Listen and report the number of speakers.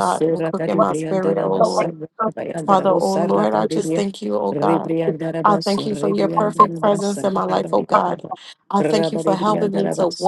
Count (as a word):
two